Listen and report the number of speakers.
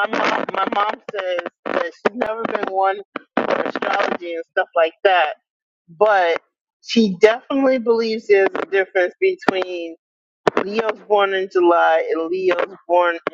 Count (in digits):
1